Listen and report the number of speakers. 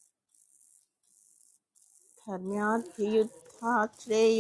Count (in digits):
1